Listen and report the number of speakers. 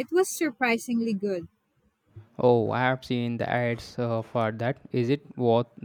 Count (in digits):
2